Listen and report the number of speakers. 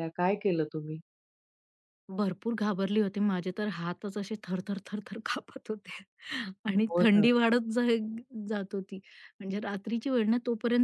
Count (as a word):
two